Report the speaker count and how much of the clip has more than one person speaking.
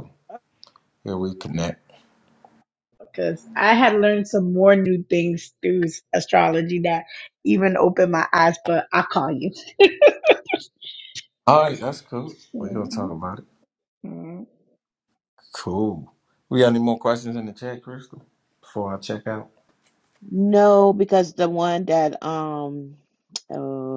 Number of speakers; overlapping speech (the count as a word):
three, no overlap